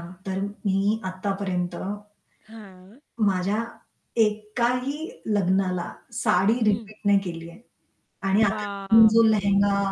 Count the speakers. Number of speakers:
two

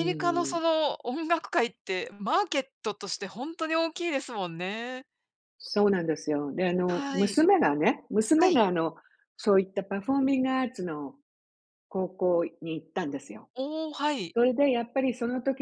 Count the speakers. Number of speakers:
two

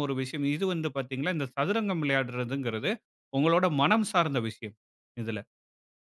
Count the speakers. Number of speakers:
one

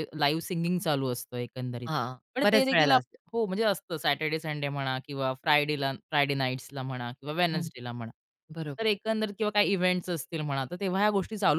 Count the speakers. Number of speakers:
two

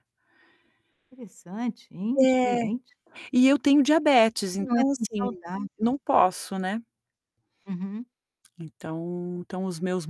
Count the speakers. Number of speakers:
two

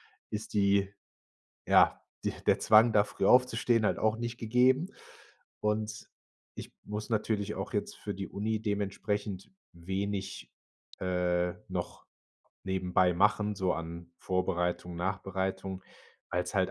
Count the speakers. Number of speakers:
one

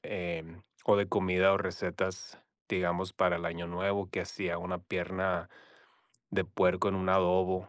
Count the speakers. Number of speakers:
one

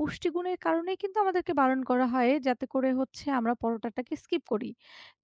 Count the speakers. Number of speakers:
one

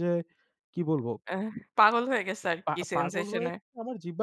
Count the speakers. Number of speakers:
two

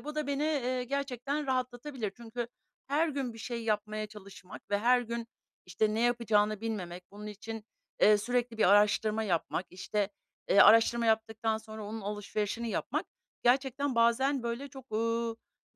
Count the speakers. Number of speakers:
one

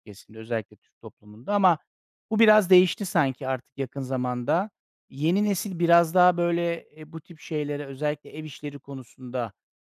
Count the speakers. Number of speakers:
one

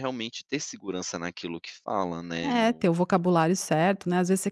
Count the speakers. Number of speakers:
two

